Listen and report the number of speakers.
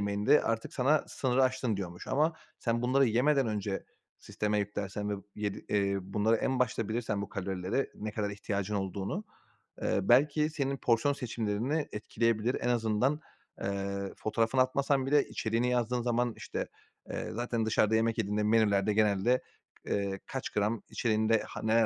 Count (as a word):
one